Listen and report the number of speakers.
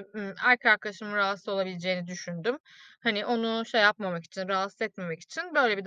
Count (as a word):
one